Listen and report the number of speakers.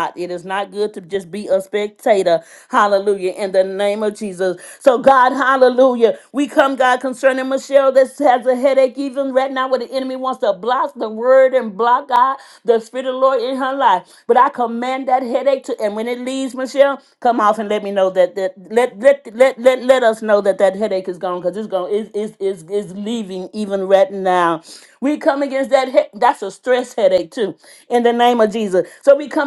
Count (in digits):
1